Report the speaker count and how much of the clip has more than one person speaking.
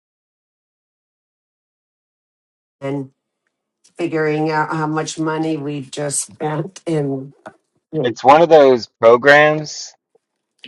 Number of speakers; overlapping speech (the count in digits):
2, about 1%